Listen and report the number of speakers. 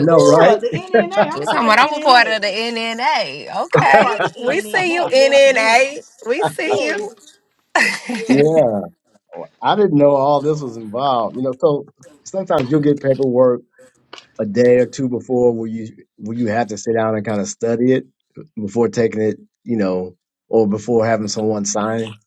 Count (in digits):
3